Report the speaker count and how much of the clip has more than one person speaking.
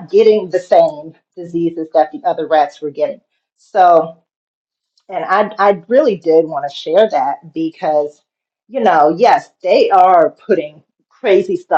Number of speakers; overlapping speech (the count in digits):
1, no overlap